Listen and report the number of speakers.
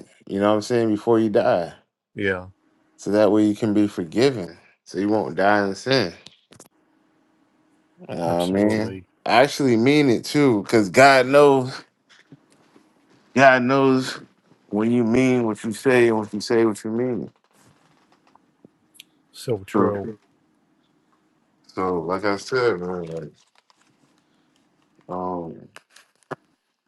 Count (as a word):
two